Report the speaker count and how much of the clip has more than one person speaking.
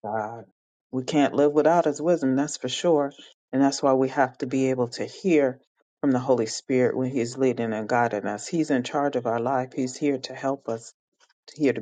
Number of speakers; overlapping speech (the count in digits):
1, no overlap